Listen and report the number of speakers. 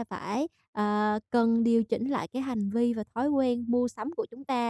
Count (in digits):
1